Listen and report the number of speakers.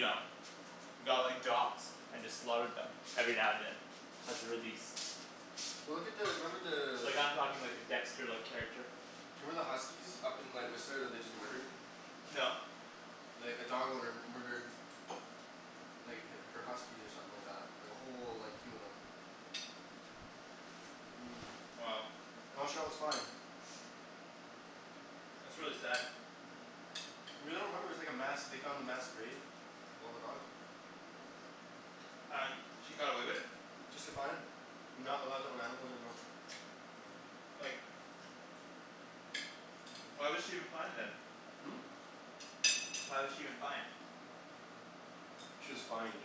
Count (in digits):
2